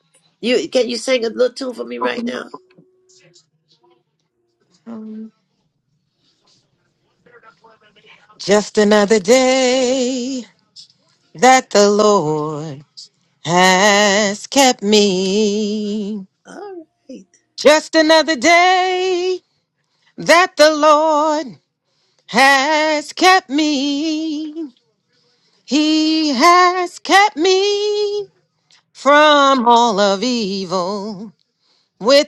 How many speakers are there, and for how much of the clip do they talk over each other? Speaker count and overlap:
2, no overlap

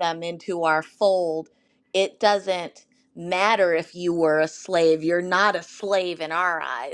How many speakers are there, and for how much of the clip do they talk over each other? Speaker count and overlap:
1, no overlap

